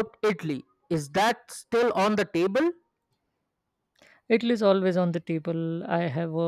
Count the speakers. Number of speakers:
2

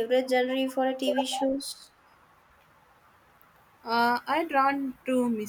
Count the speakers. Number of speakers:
2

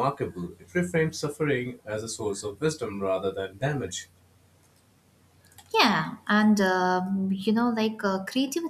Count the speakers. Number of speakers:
2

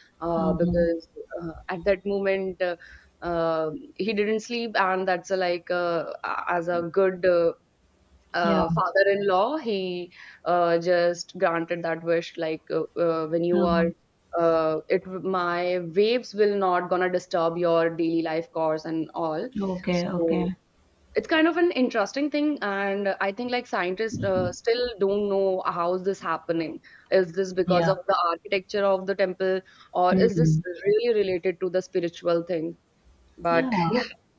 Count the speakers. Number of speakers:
2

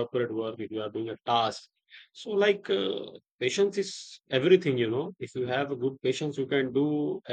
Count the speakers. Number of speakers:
1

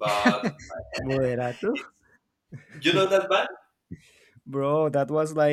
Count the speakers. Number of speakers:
2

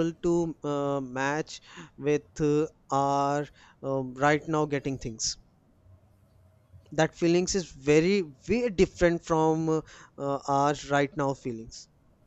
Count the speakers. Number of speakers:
1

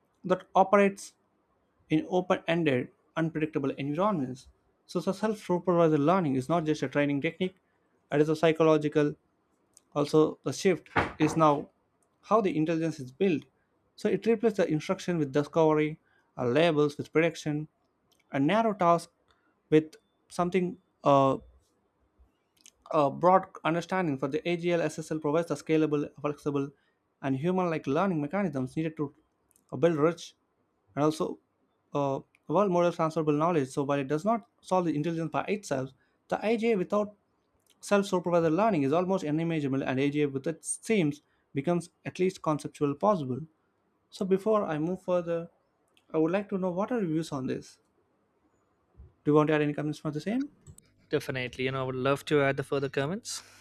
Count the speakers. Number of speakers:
2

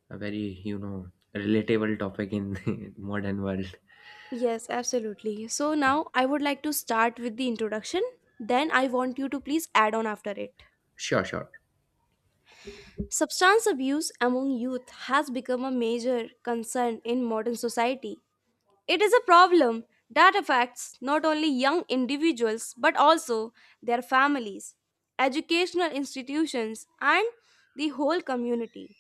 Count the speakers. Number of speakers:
2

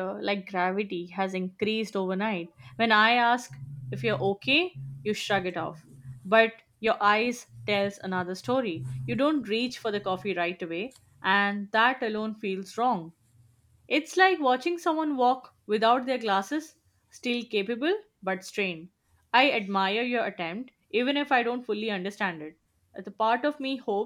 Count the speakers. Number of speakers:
1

